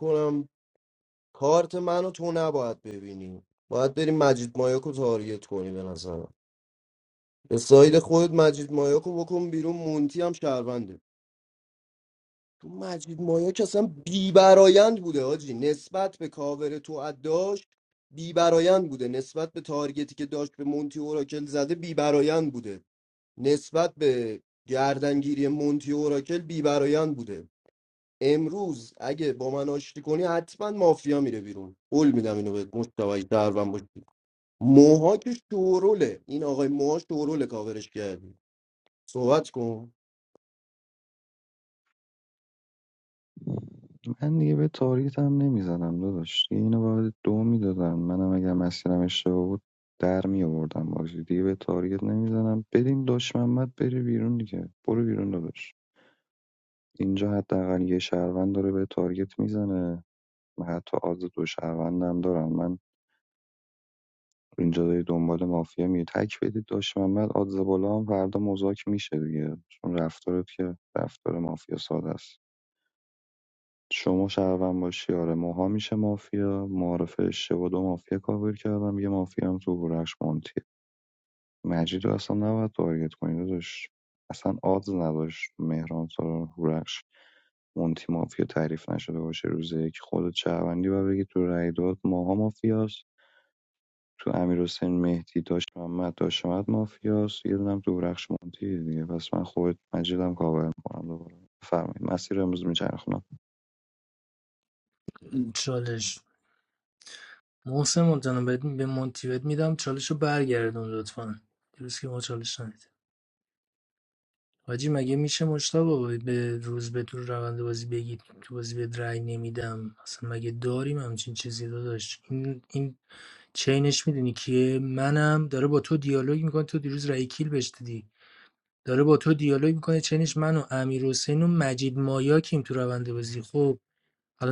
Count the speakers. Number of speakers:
3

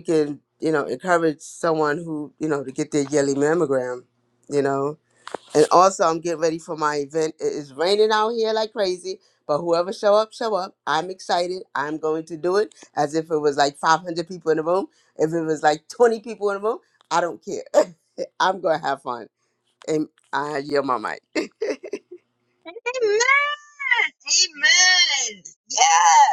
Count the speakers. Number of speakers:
2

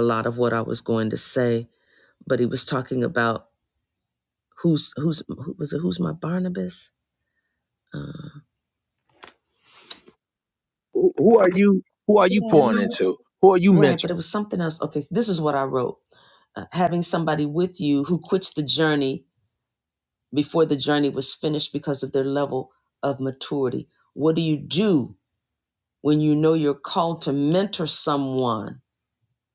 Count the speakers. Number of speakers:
2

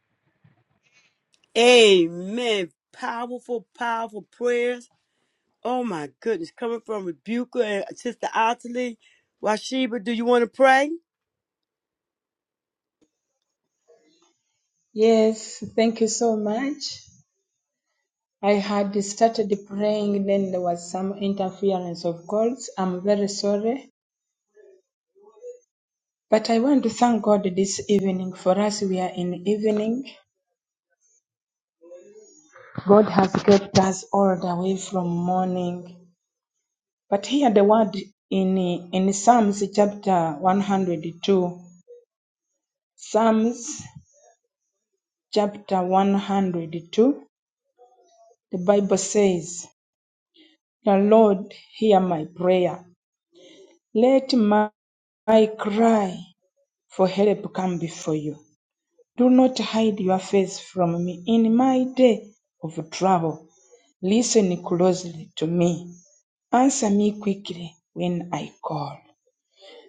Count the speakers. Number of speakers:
2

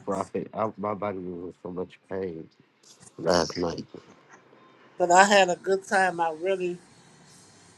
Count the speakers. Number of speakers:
2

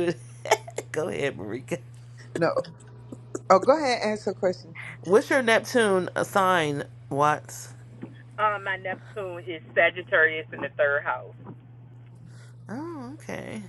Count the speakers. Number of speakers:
3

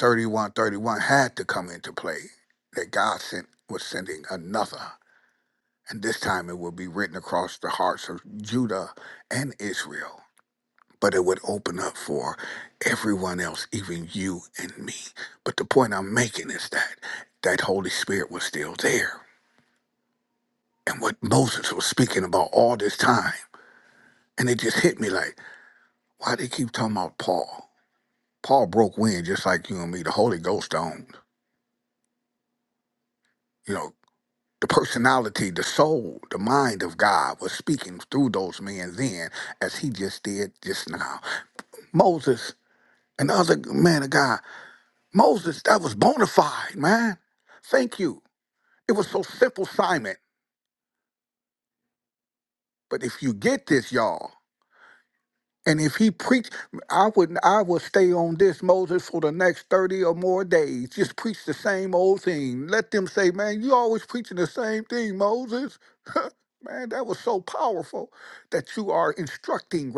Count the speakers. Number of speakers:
1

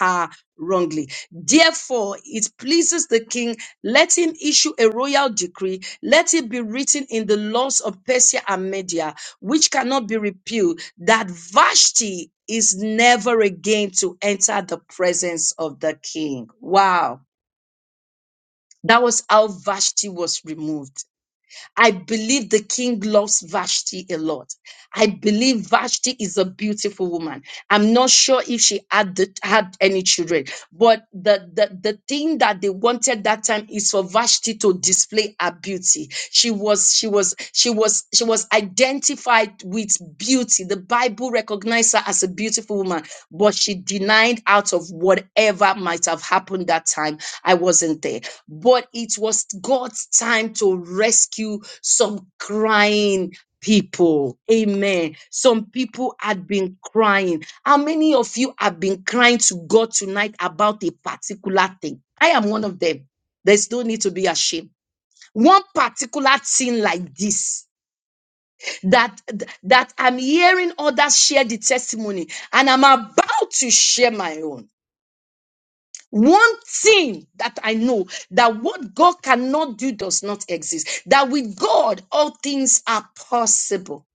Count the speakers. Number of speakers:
1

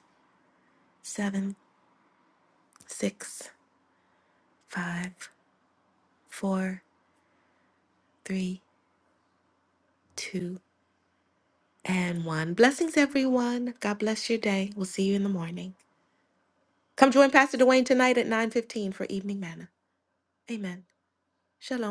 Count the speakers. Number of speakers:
1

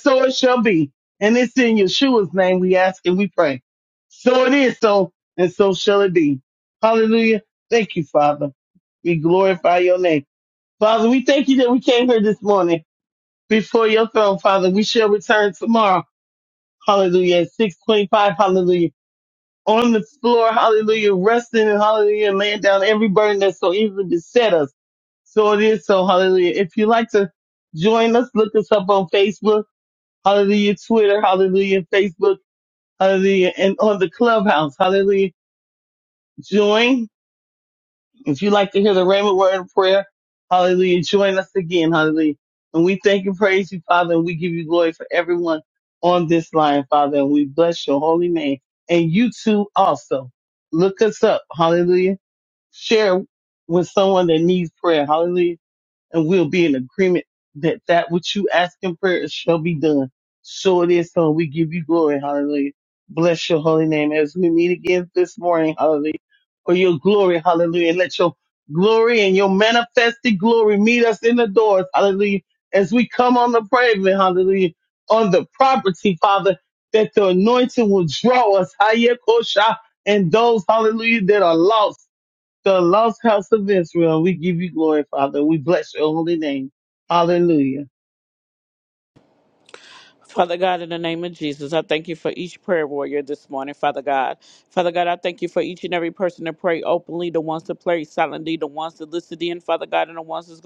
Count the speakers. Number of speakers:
2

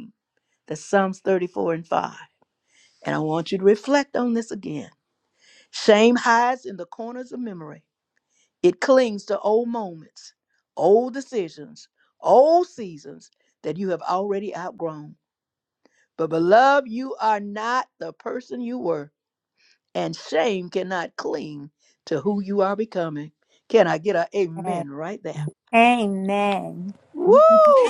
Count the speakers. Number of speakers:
2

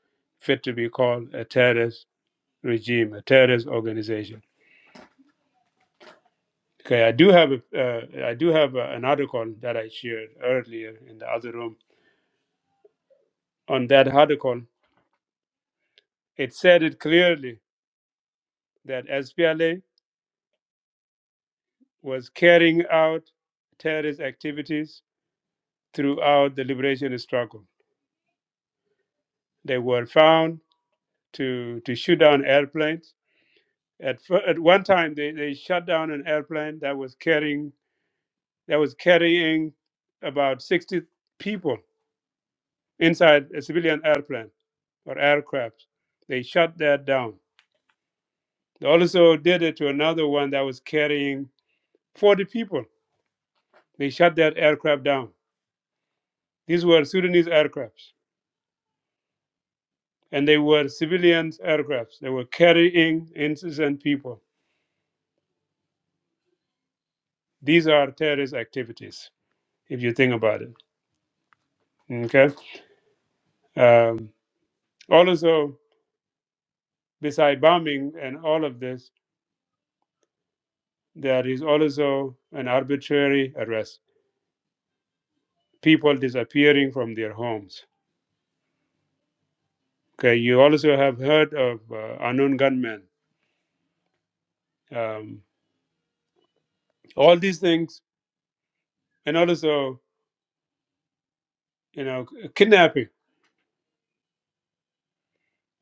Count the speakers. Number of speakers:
1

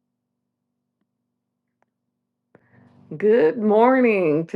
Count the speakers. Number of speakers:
1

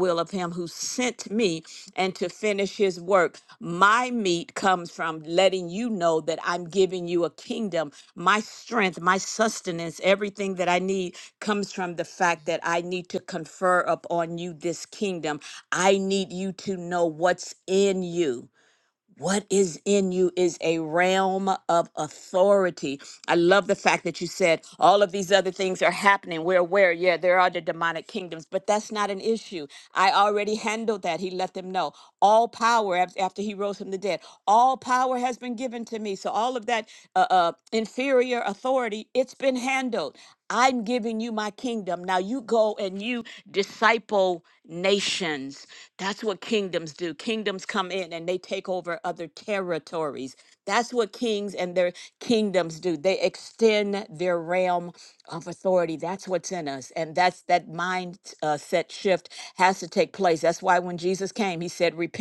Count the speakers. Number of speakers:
1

